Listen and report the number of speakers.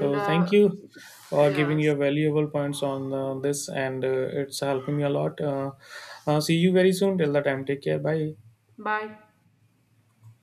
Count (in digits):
2